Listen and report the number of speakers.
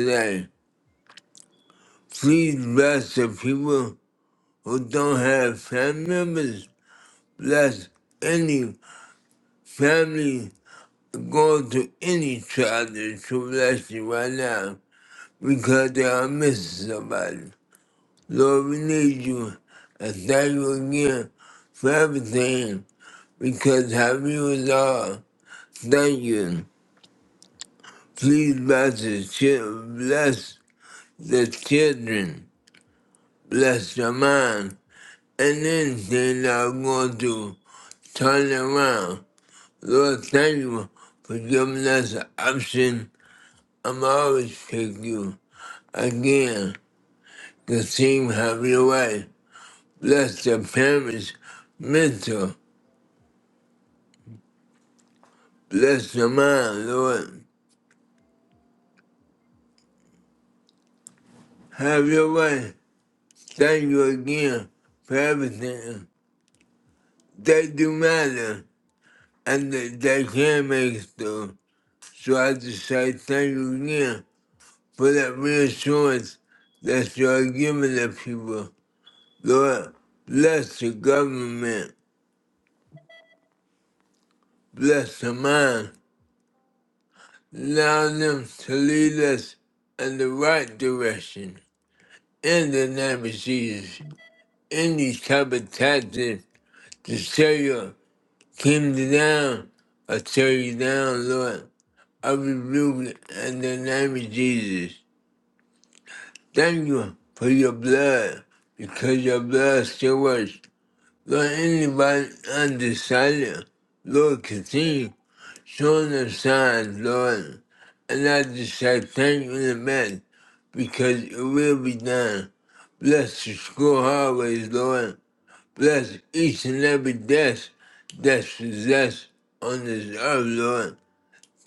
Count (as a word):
one